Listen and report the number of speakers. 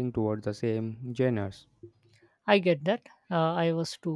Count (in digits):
2